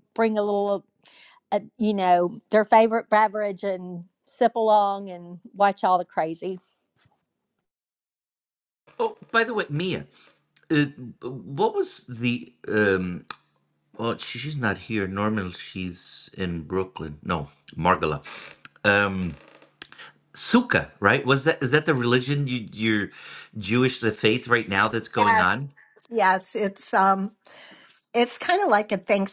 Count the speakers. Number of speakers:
three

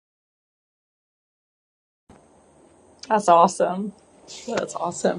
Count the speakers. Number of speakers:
one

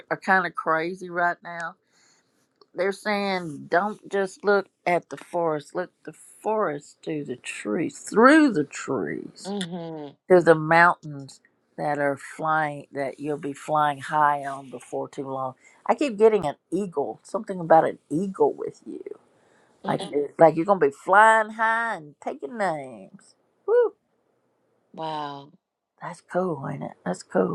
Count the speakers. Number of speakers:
two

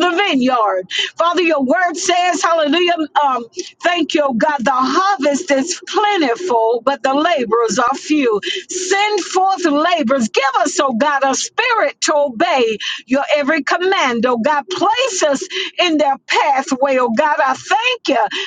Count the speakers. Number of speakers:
one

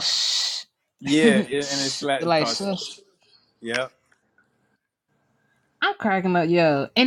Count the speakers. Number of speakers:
two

